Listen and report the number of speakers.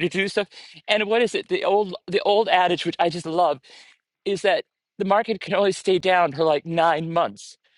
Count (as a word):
one